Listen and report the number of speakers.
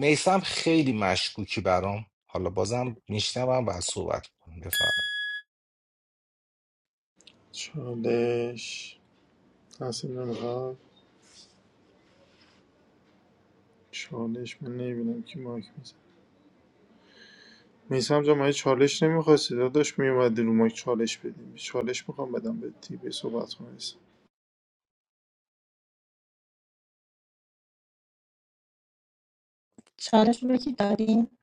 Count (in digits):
3